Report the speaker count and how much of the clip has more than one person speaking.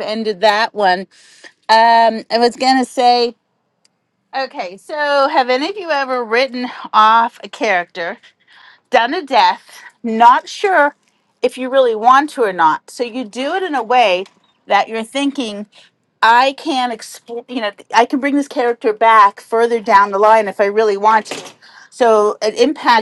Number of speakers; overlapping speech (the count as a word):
one, no overlap